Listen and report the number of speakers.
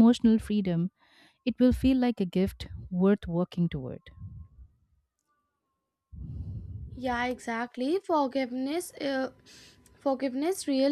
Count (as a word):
two